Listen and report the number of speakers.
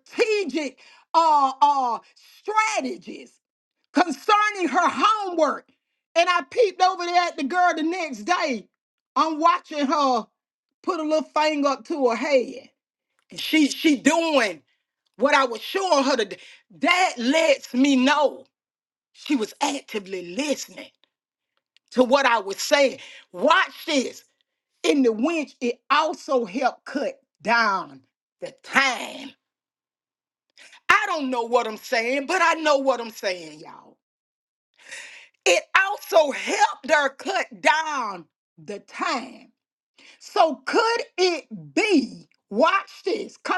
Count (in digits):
1